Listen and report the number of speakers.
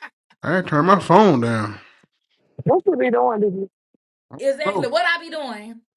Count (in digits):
3